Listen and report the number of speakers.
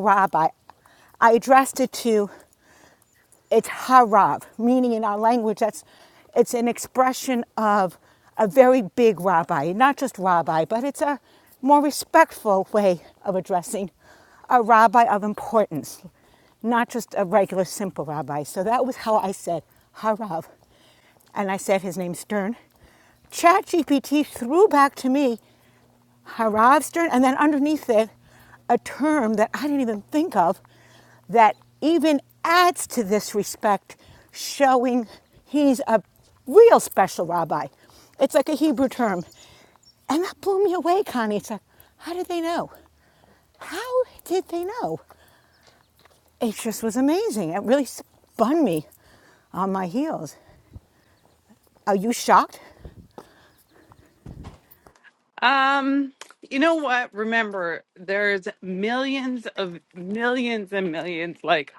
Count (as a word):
two